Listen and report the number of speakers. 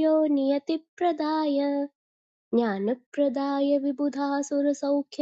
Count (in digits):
1